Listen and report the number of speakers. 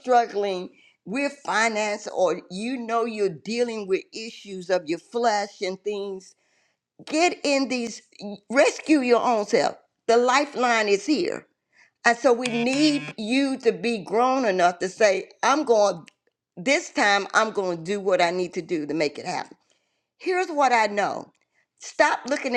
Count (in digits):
1